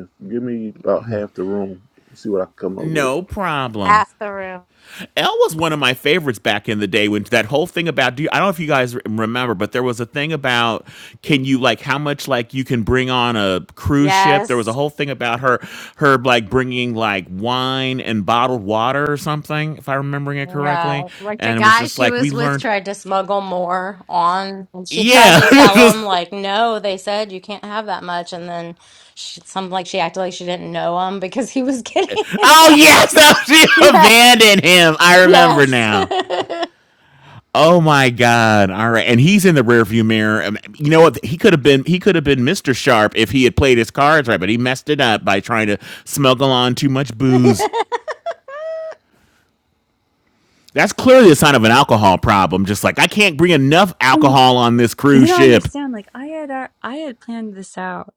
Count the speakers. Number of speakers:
4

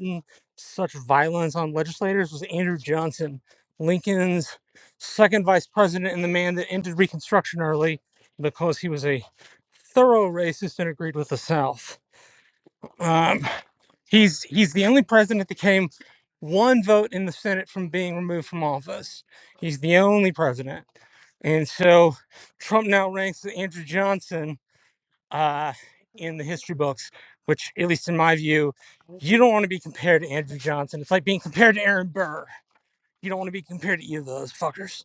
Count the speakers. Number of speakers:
1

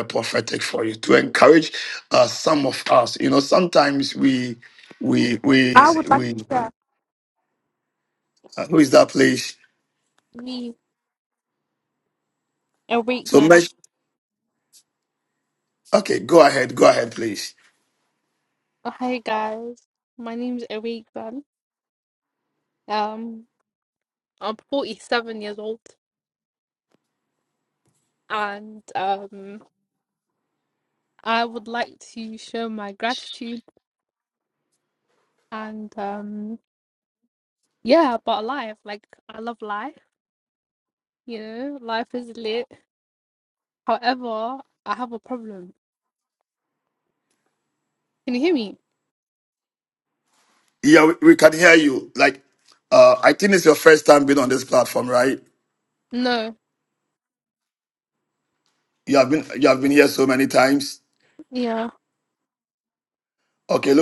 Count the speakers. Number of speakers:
2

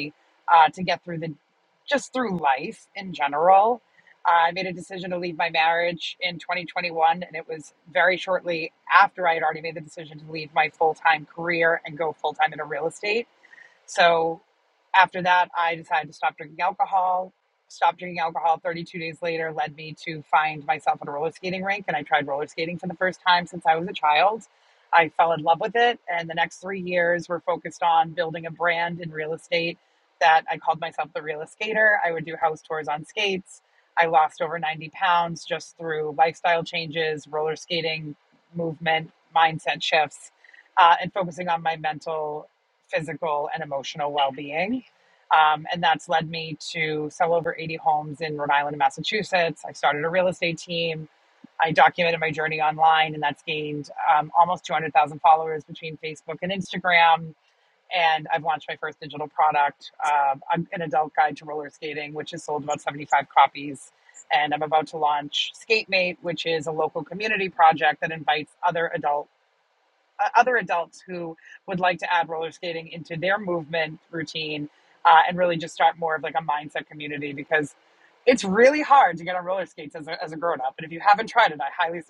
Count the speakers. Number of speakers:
1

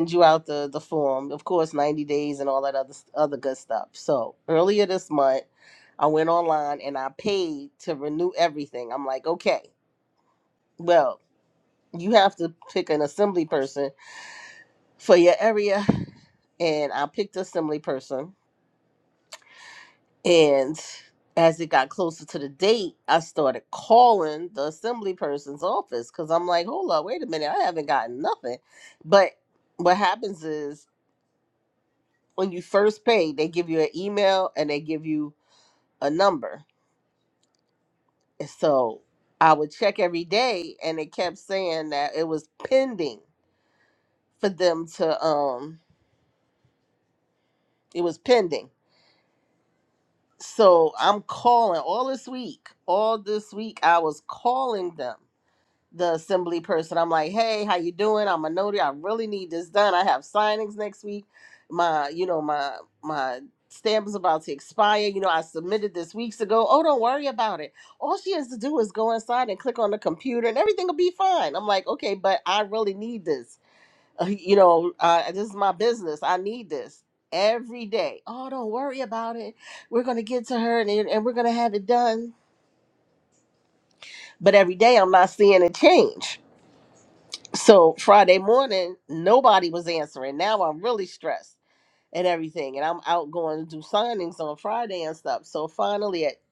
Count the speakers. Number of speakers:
1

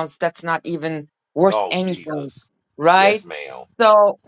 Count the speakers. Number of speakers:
2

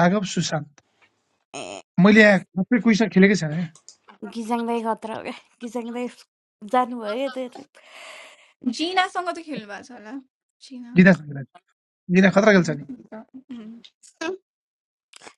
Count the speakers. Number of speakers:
3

